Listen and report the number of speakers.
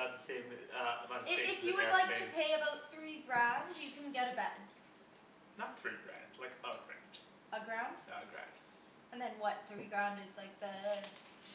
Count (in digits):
2